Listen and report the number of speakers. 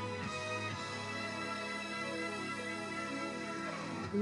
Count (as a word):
zero